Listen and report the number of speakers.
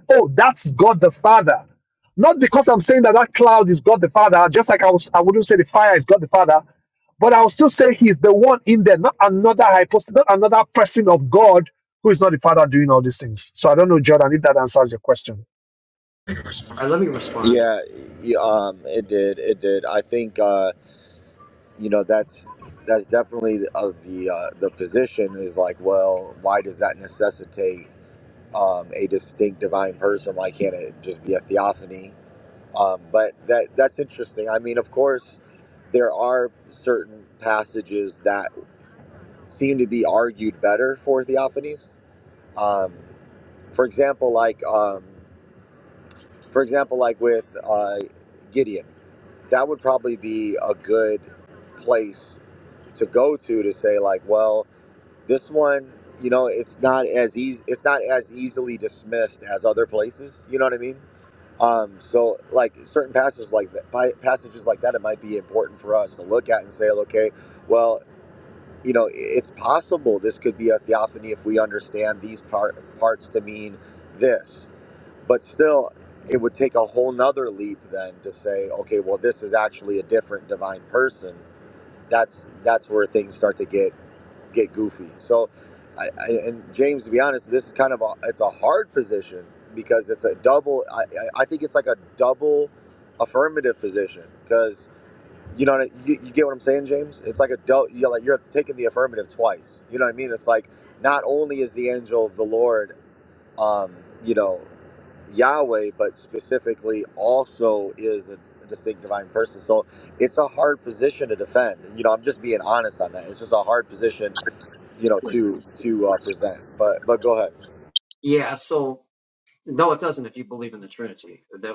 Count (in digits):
3